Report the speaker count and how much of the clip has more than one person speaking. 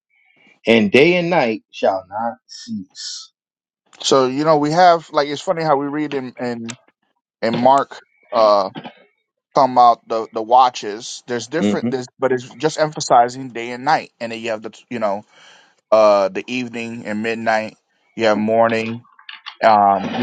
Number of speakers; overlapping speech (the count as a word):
two, about 2%